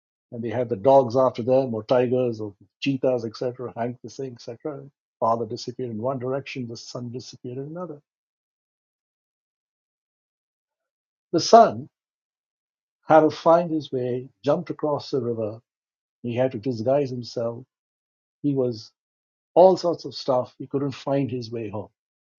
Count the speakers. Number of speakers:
1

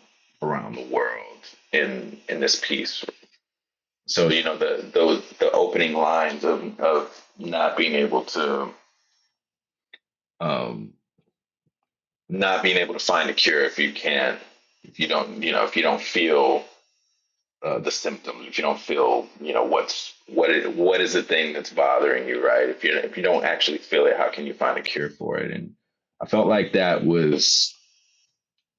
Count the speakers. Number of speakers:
1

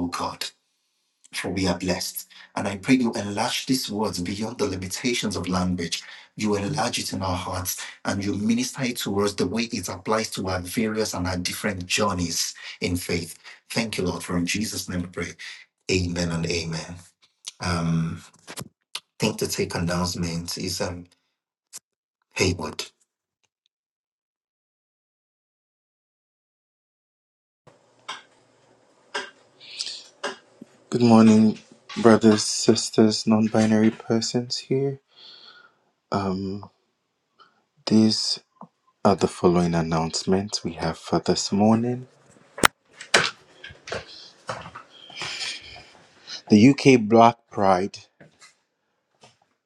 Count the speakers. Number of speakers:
2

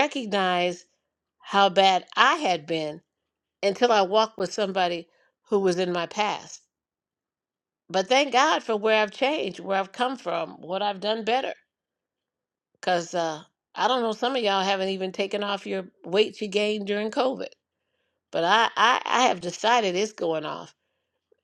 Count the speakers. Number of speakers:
1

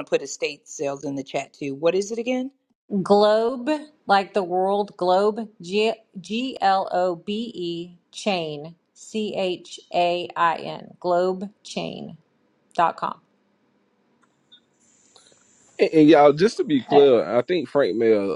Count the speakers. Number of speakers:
3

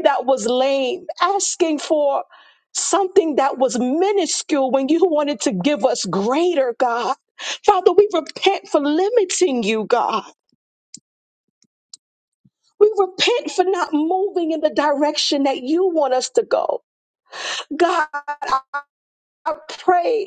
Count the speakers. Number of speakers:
1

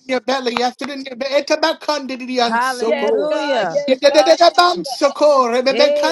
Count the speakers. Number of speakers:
3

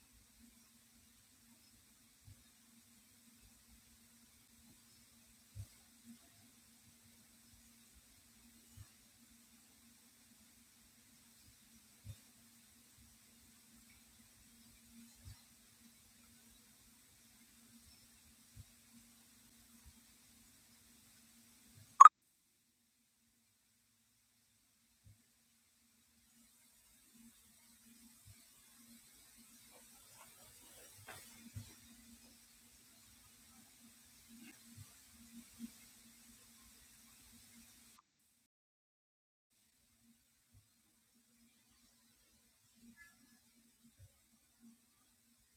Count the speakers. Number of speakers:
0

